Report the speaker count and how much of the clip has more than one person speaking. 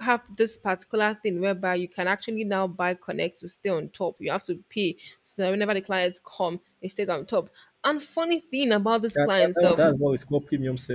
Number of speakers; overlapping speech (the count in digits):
2, about 7%